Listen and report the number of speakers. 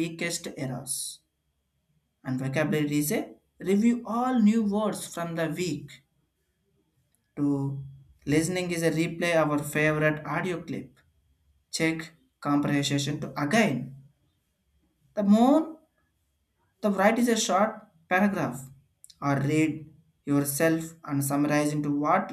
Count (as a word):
one